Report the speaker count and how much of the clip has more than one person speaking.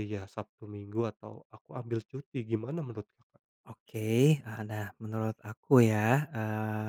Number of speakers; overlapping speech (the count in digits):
2, no overlap